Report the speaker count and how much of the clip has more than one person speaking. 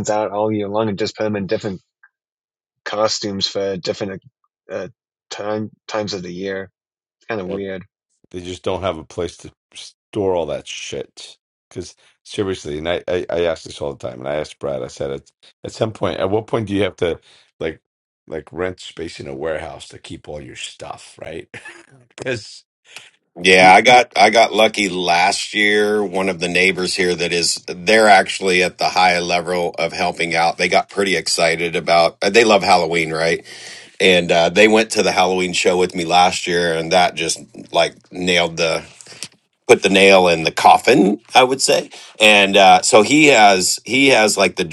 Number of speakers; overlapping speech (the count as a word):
three, no overlap